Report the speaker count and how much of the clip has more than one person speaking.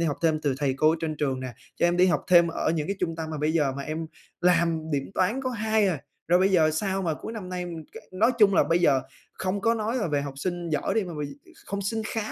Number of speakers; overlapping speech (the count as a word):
one, no overlap